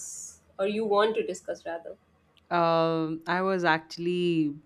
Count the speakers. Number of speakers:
2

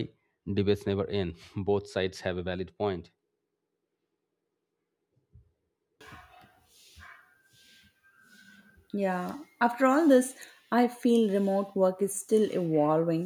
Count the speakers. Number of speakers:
2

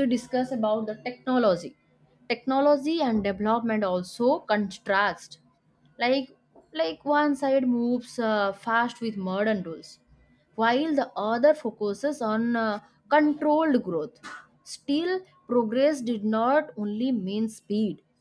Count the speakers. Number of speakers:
1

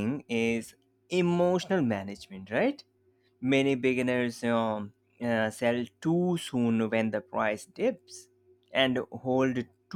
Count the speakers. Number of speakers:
1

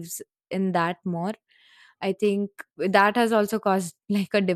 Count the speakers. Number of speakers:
1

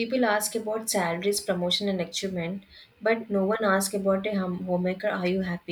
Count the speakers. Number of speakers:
1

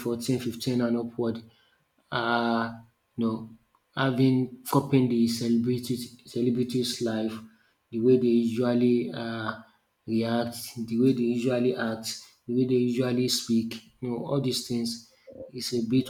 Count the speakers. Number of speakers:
1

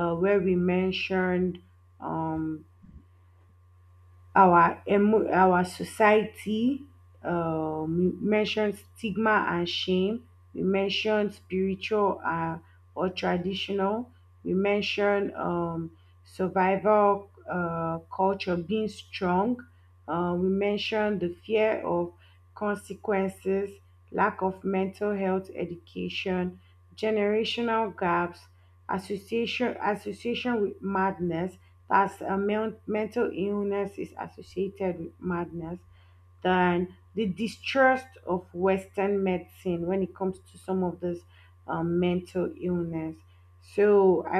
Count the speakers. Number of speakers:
1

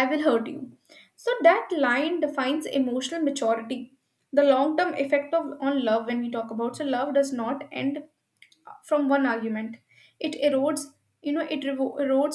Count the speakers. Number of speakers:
1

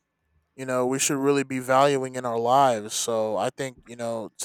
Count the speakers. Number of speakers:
1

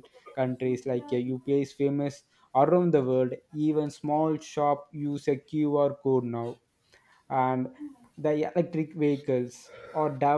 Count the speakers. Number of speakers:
1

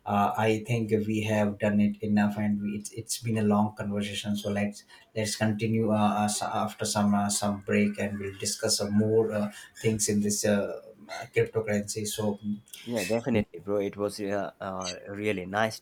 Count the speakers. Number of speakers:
2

